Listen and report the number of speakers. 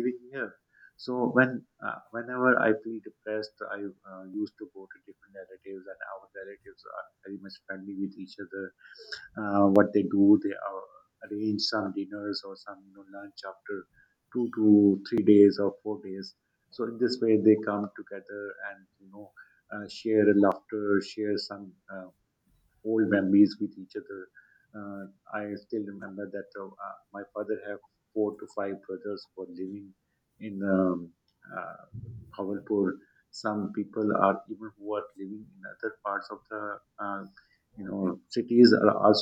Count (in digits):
1